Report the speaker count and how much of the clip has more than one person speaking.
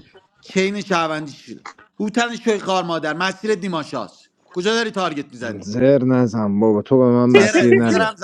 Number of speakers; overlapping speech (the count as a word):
two, about 10%